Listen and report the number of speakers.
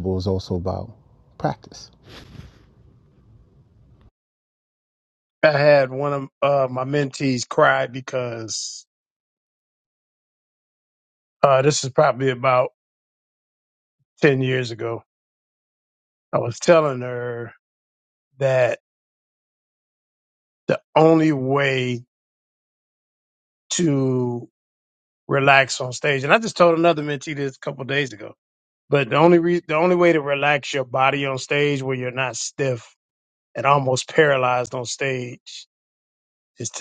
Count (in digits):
2